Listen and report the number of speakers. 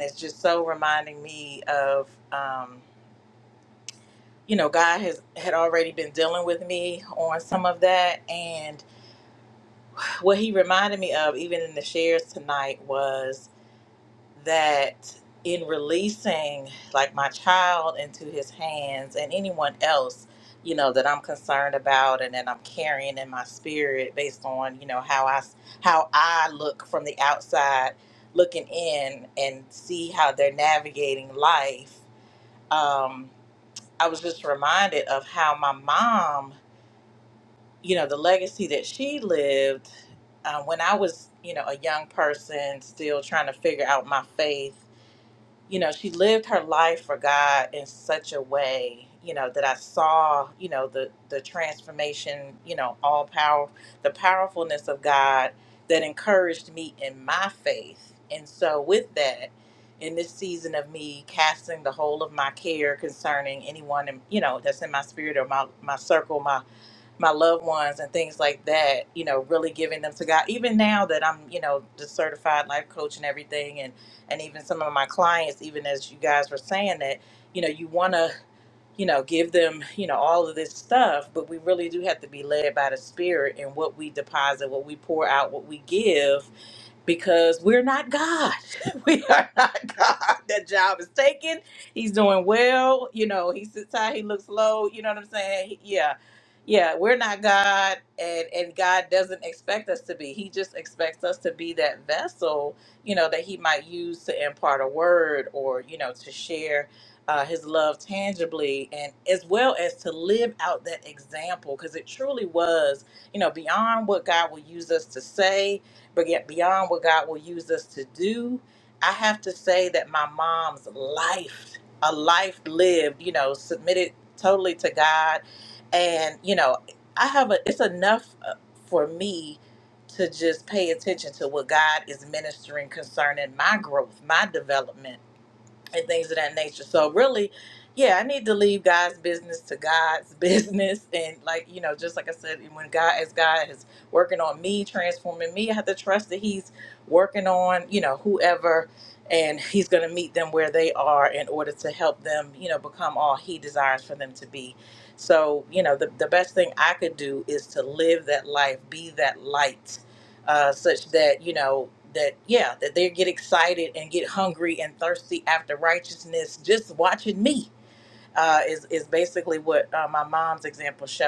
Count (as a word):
one